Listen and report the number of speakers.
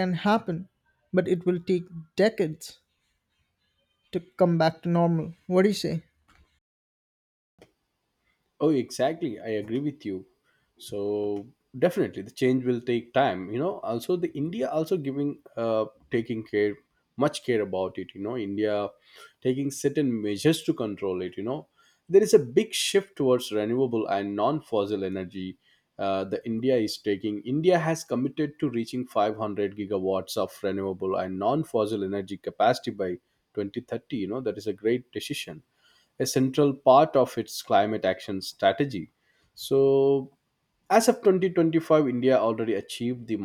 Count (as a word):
two